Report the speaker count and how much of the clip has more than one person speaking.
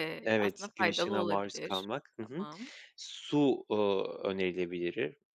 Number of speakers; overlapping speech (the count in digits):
2, about 34%